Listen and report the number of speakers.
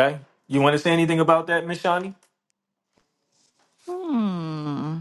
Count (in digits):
2